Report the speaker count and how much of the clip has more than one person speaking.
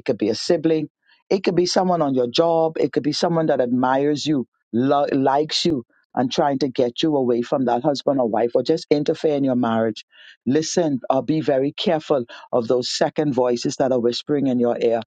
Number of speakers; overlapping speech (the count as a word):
one, no overlap